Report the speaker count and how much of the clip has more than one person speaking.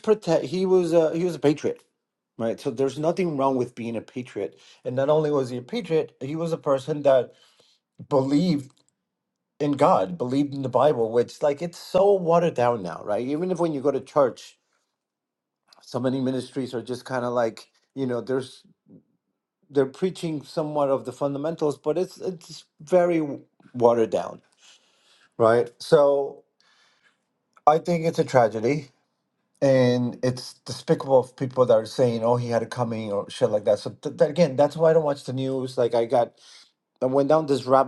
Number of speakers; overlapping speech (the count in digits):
1, no overlap